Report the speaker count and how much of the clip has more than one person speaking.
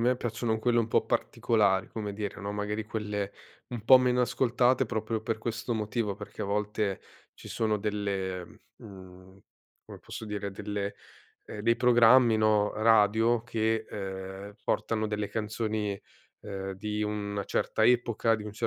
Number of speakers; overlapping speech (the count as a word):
one, no overlap